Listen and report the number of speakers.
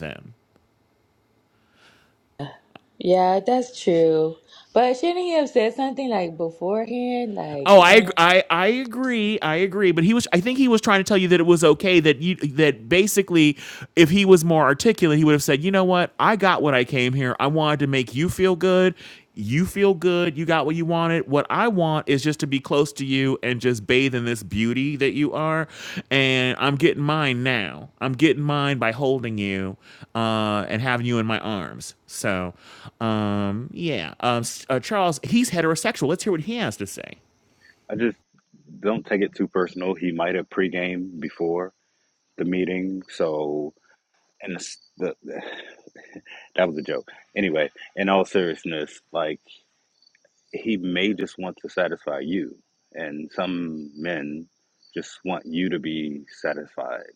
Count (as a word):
three